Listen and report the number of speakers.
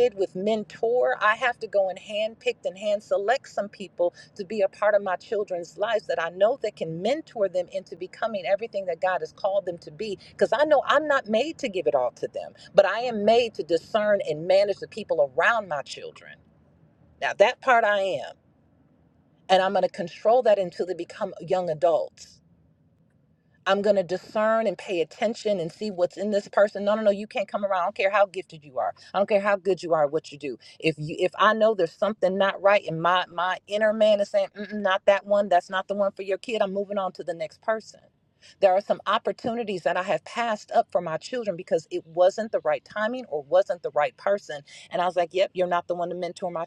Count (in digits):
1